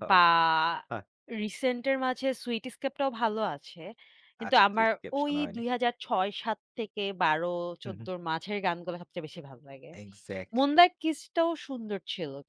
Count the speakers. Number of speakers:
two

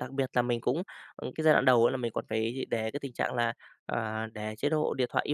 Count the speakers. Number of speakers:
one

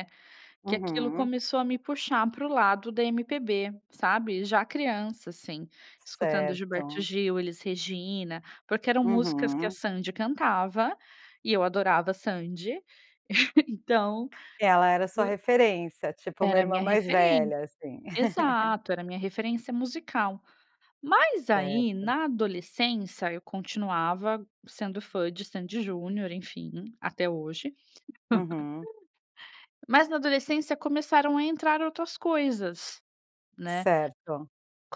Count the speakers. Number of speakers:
two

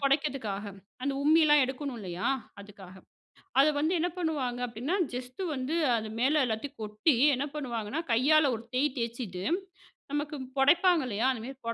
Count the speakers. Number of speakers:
one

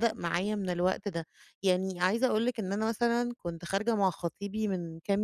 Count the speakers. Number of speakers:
one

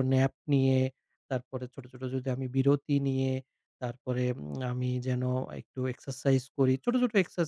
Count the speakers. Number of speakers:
one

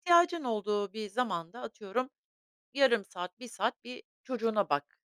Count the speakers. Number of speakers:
one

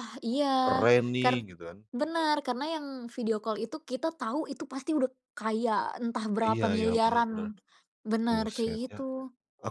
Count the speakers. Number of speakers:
two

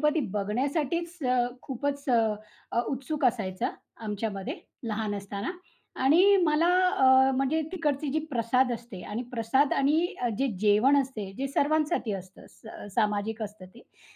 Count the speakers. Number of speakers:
one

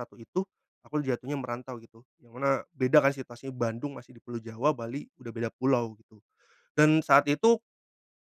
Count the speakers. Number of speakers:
one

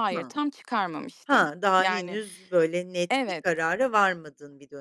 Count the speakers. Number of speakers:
two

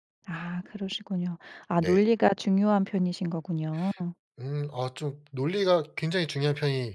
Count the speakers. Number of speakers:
two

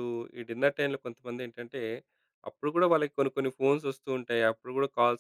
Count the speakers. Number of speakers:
one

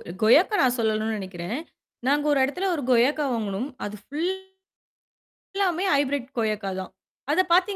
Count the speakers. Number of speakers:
one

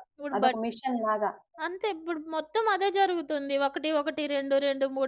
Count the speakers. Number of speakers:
two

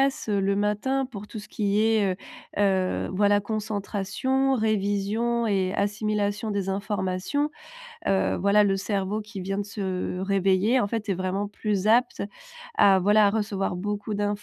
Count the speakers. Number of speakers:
one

